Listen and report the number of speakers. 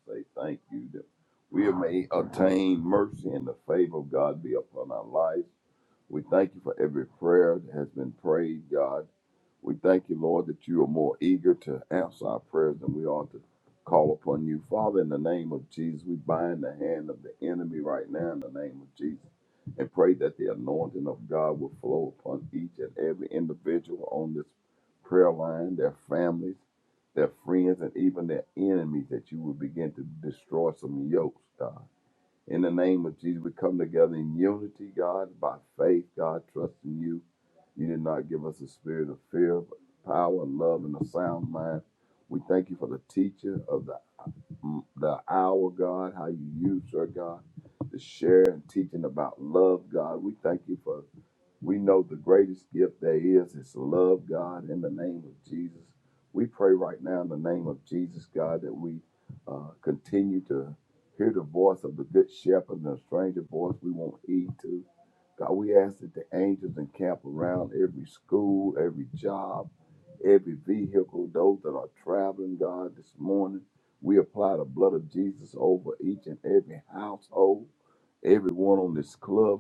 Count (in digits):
1